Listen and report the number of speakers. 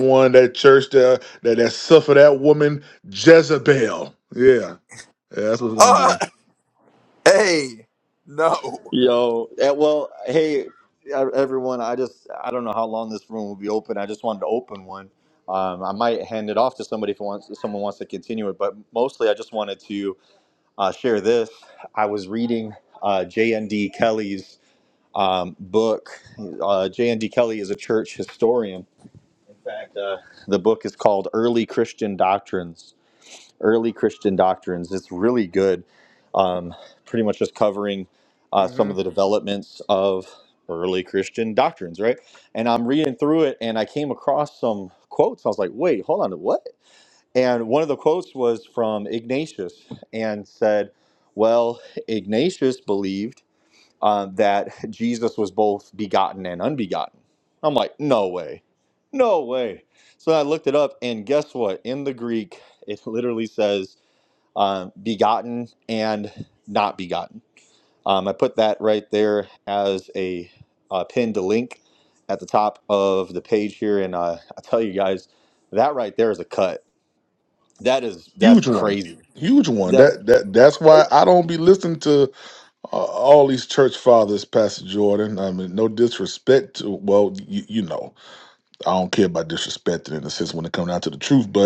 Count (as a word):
three